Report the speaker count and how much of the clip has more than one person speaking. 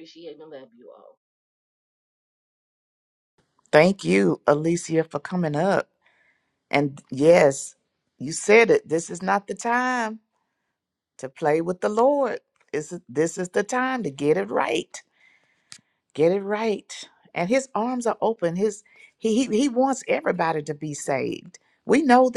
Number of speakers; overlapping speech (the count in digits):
2, no overlap